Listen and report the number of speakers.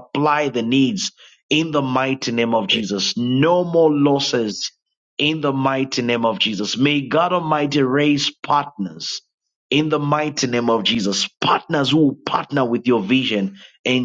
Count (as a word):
one